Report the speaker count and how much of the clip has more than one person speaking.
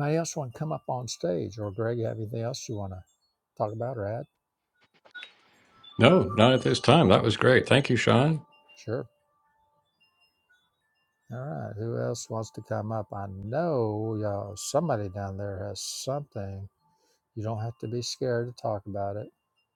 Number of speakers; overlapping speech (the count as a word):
two, no overlap